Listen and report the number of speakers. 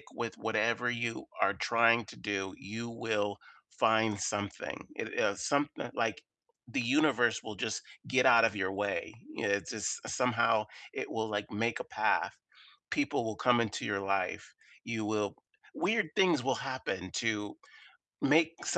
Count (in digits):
1